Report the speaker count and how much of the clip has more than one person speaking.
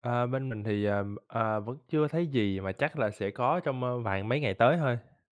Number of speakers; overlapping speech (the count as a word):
one, no overlap